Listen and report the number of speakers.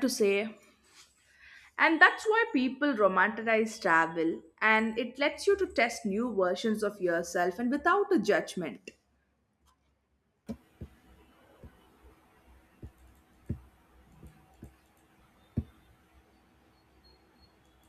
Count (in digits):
1